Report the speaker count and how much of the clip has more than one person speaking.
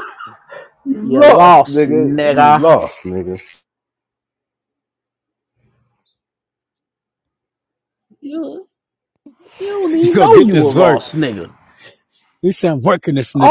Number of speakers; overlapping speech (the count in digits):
3, about 21%